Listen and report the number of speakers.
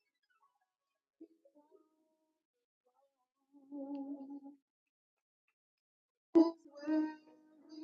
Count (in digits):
0